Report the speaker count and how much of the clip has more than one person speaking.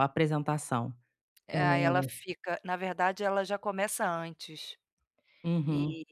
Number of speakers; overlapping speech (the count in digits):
2, about 5%